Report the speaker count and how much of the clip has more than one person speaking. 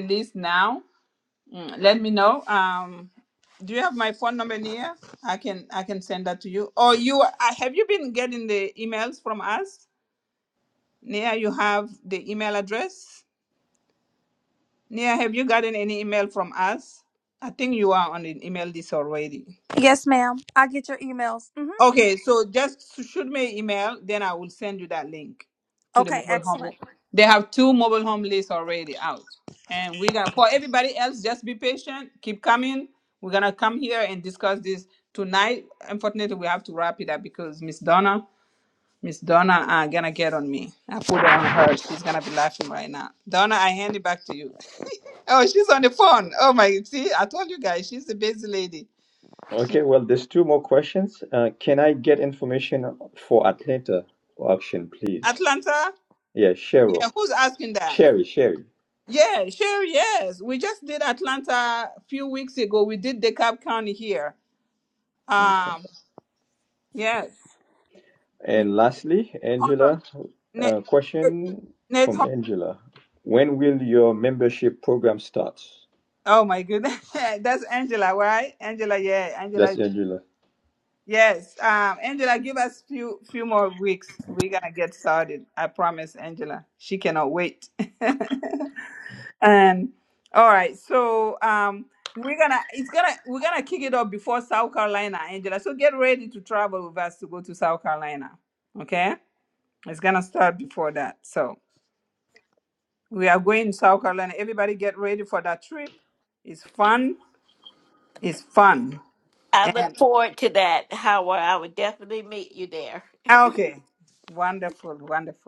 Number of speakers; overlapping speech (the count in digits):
4, about 2%